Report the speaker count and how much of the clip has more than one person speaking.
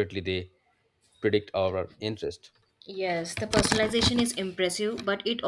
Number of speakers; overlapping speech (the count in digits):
2, no overlap